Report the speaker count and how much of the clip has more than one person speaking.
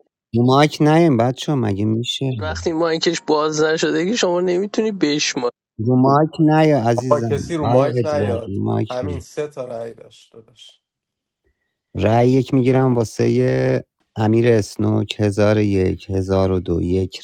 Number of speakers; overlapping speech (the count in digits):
3, about 9%